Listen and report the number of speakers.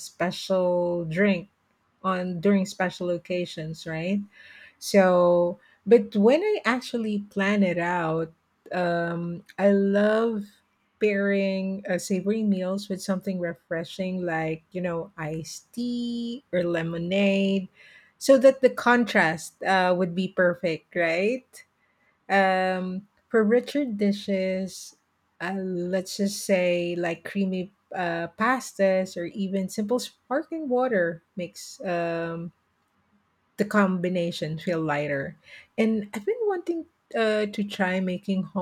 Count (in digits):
1